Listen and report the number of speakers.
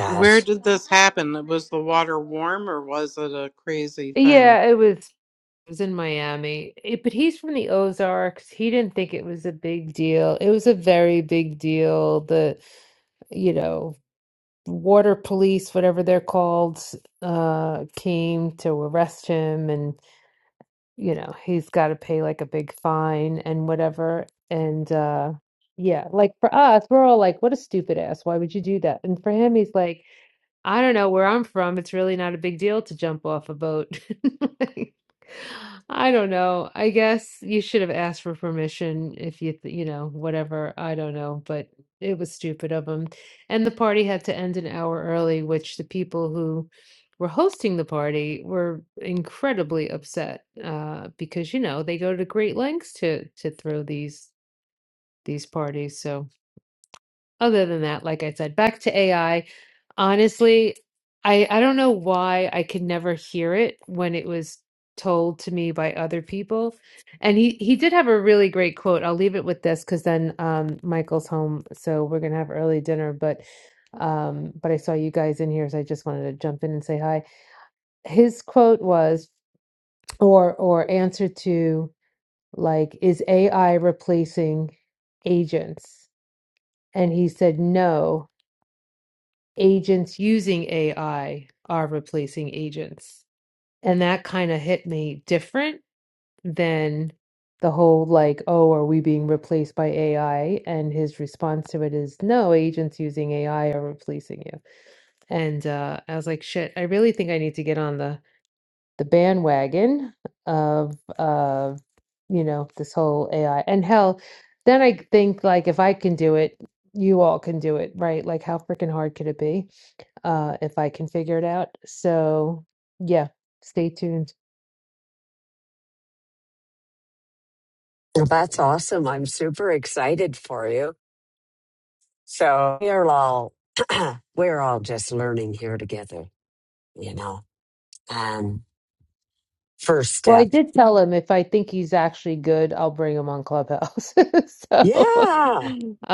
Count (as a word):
three